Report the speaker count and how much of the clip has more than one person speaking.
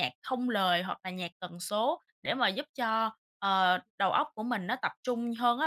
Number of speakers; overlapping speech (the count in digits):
1, no overlap